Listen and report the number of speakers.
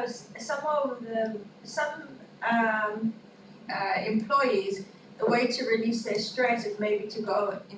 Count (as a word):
one